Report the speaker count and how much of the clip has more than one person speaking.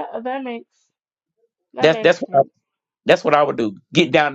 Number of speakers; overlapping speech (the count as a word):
two, about 14%